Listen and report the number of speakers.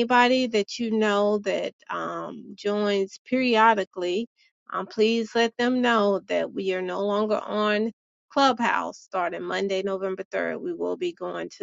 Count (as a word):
one